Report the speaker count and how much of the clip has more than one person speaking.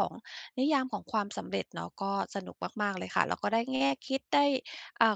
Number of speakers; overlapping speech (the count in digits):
1, no overlap